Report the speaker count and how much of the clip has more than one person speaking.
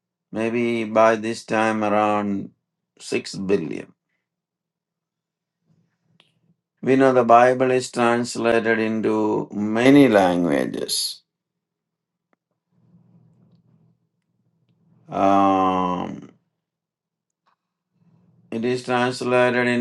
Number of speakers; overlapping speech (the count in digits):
1, no overlap